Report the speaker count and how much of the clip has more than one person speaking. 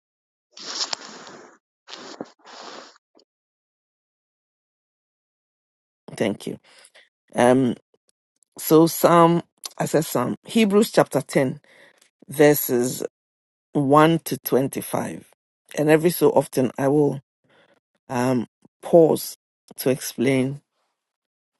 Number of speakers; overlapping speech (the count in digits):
1, no overlap